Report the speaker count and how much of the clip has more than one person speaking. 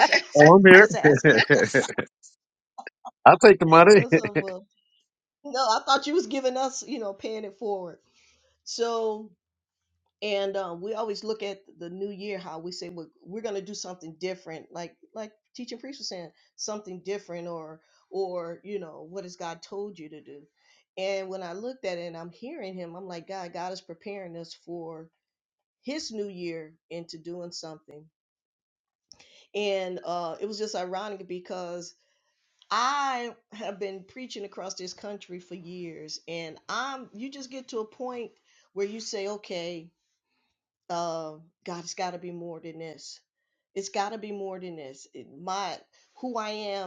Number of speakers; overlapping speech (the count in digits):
2, about 1%